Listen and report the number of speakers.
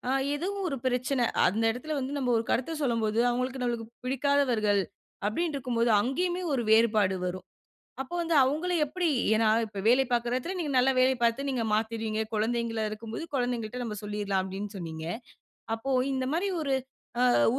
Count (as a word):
one